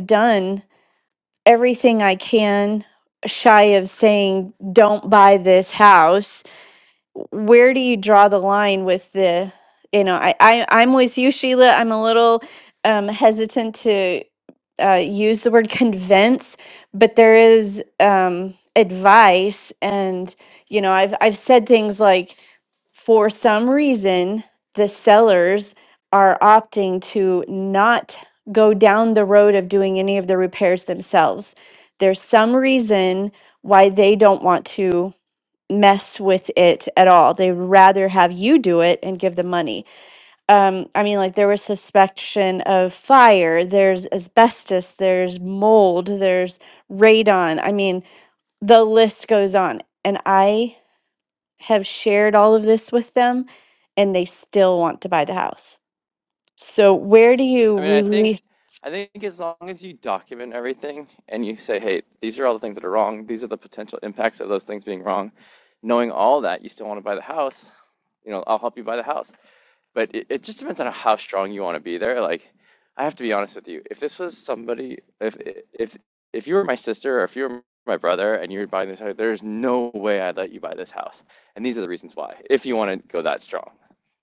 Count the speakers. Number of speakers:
two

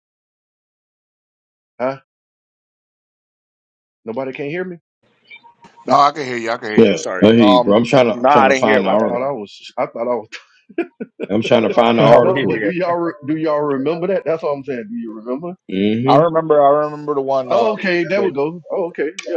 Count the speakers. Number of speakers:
three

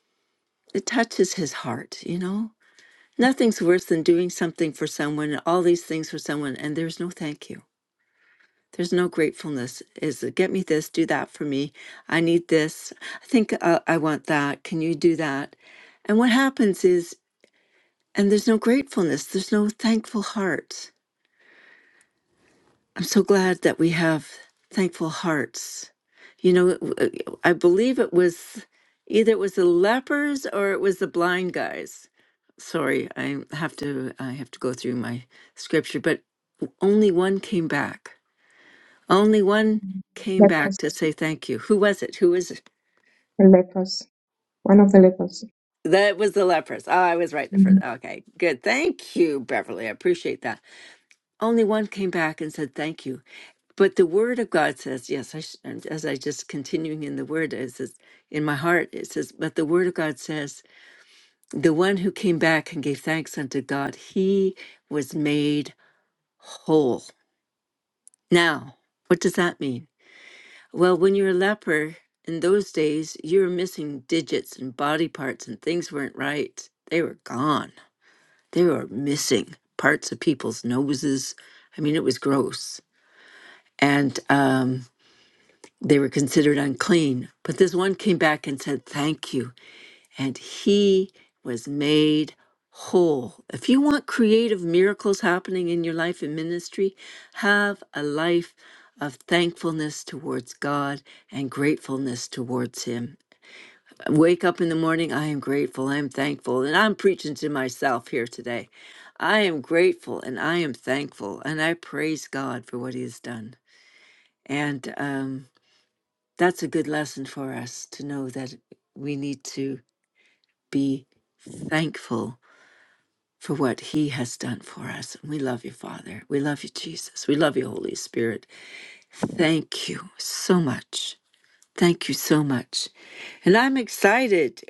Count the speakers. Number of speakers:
two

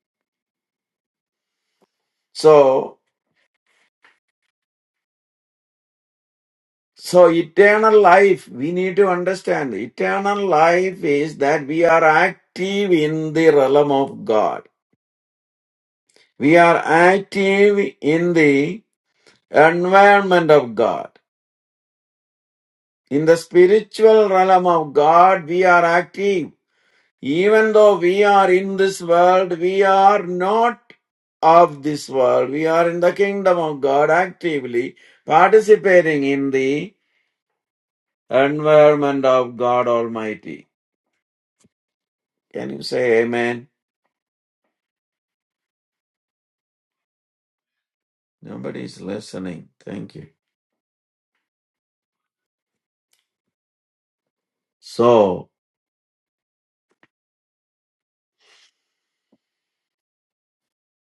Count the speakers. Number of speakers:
one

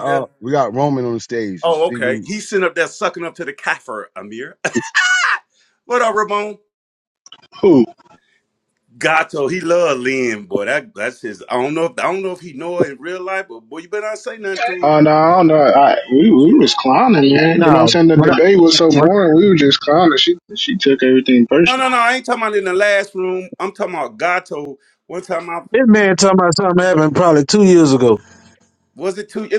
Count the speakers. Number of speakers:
four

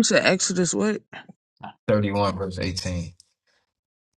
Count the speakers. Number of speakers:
two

